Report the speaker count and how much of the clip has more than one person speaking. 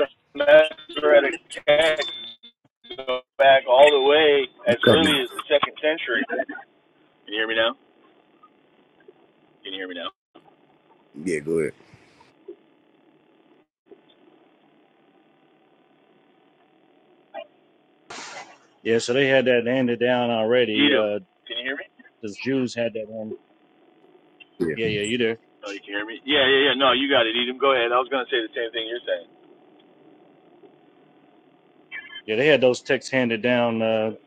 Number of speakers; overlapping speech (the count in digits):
3, about 3%